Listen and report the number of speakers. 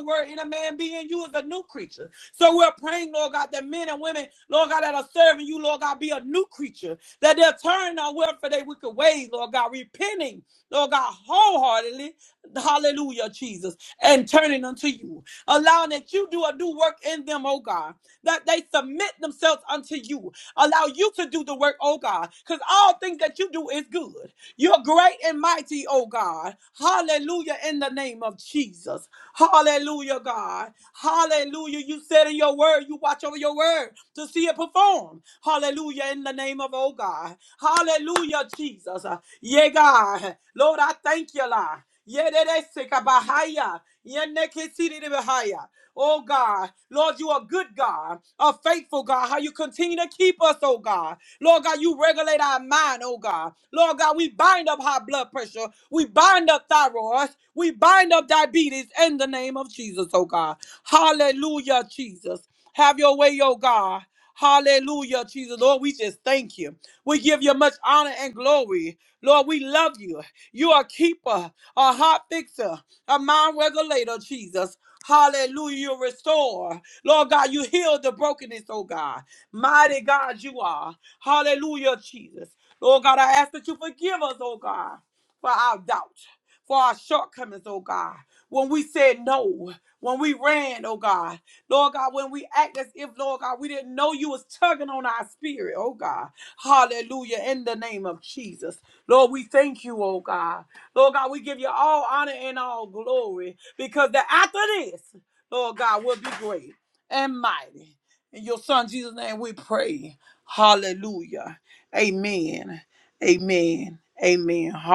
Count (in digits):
1